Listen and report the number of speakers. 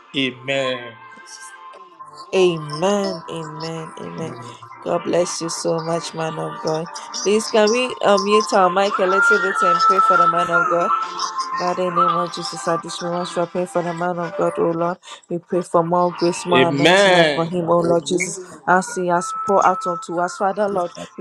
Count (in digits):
2